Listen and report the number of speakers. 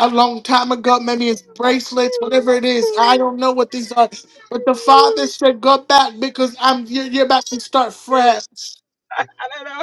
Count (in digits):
2